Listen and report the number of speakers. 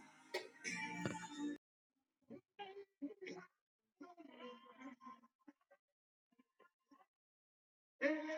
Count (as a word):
zero